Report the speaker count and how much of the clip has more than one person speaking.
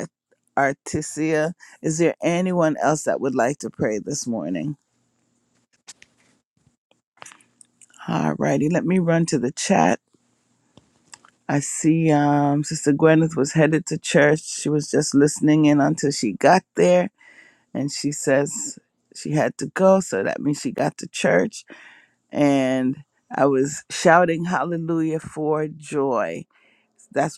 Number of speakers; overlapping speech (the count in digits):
1, no overlap